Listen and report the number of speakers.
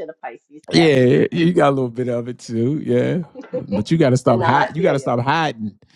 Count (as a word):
two